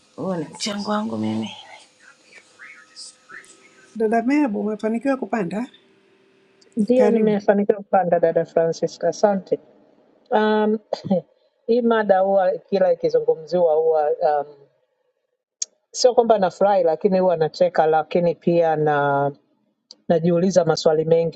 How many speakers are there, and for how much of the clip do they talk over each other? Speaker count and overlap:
3, about 2%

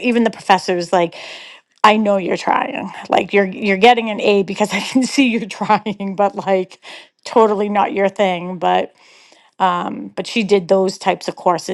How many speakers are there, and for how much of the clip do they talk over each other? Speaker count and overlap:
1, no overlap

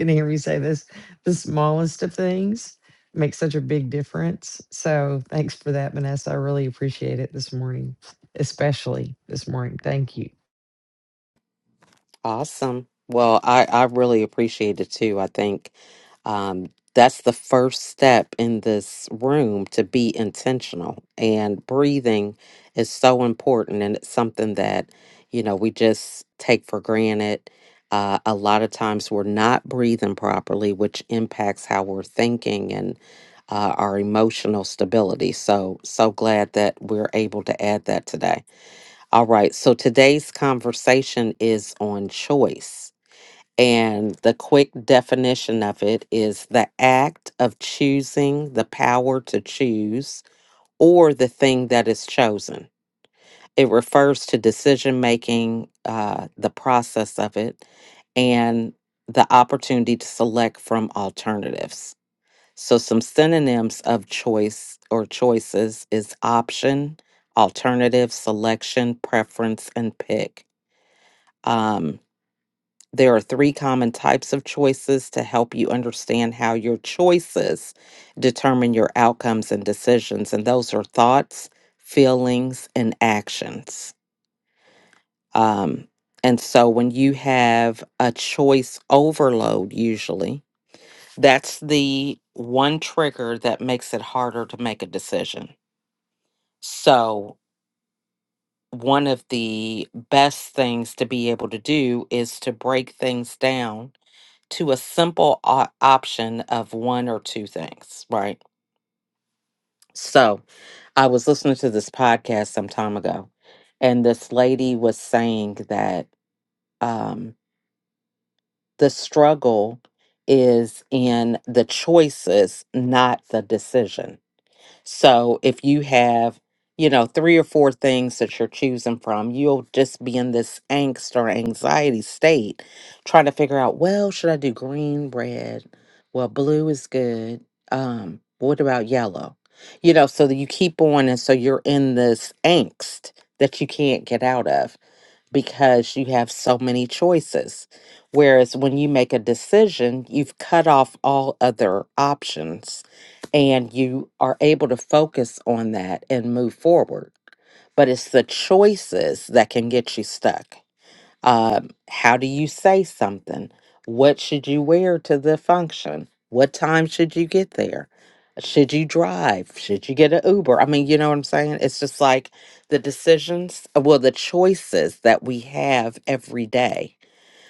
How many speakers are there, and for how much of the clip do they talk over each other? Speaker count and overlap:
2, no overlap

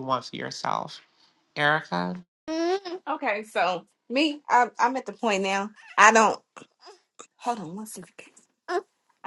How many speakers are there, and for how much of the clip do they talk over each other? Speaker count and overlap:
2, no overlap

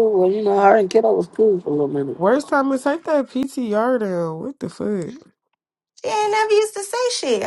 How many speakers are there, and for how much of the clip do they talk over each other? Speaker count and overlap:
3, no overlap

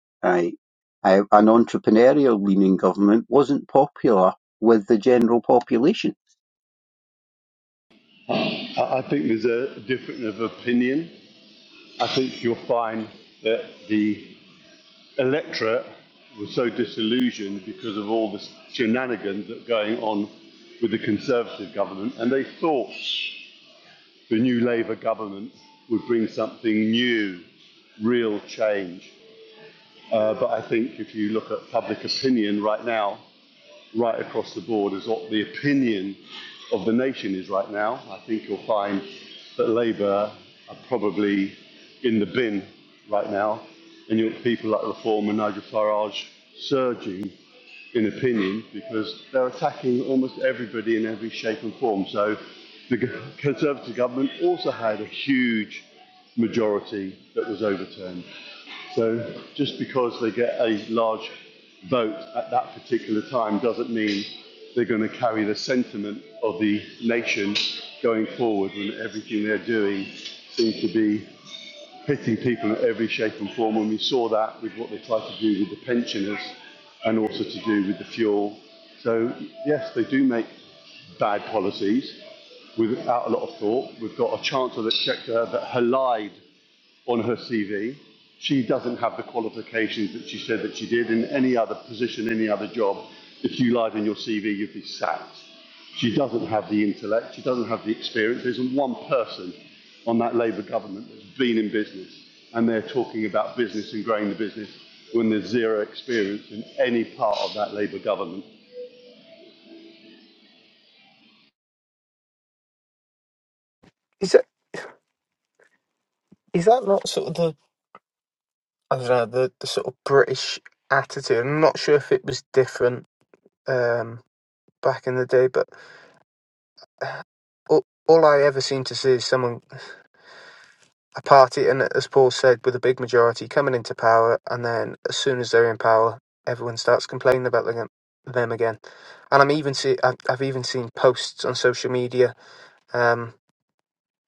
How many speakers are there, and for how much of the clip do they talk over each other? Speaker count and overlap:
3, no overlap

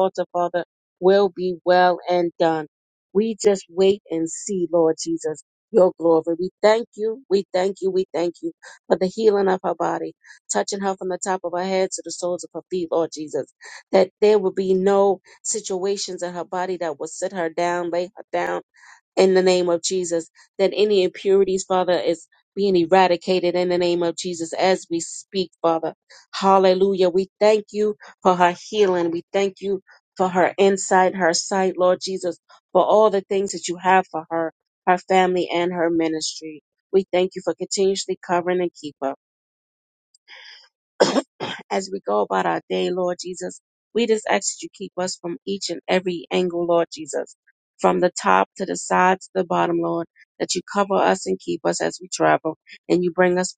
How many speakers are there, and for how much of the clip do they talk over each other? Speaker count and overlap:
1, no overlap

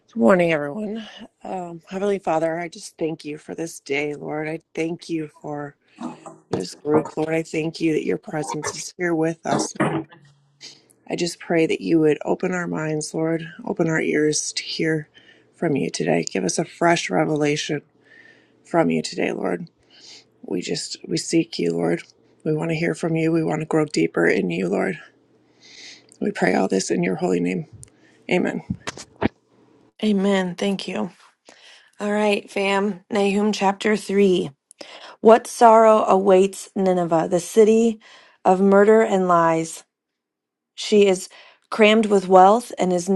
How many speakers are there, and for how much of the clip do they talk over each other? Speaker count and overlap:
2, no overlap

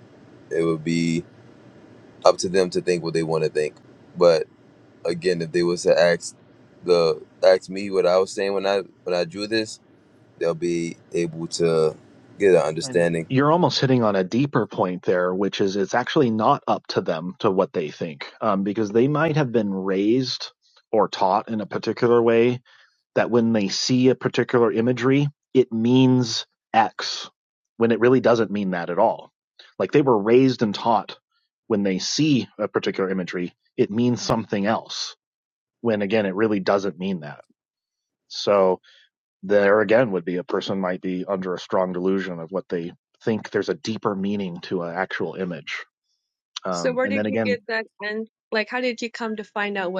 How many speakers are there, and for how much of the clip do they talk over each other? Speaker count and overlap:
3, about 2%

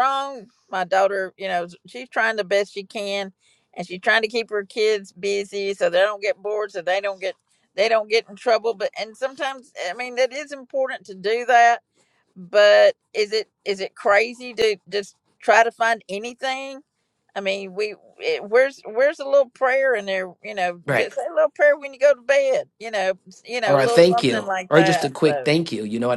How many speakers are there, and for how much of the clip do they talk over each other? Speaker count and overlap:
2, about 8%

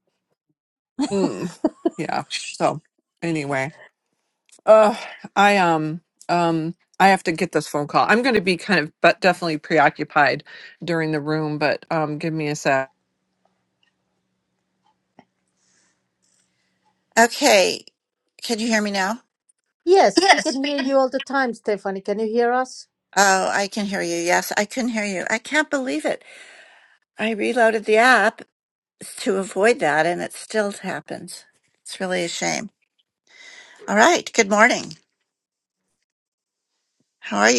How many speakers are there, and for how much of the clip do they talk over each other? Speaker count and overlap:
3, about 2%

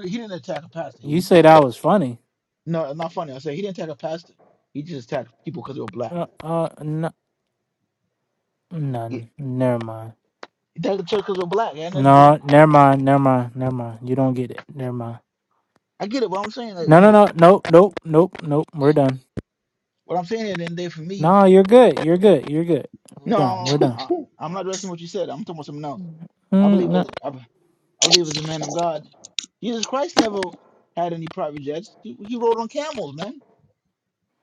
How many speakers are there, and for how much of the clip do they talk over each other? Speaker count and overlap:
2, about 8%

